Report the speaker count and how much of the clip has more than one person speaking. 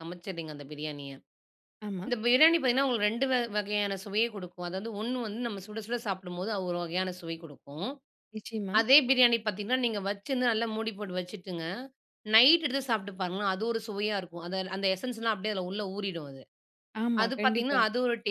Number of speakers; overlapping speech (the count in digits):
2, about 4%